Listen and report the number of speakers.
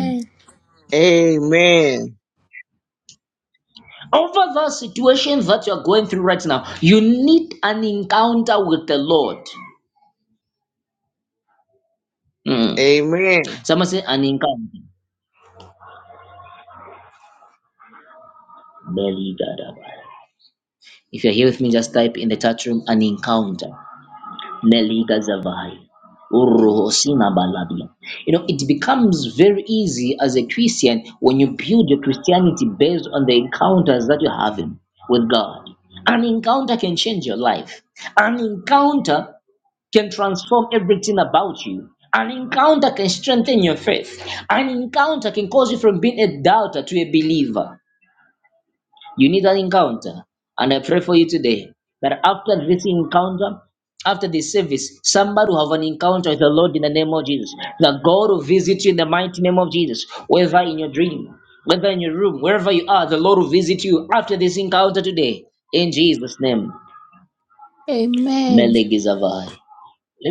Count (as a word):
three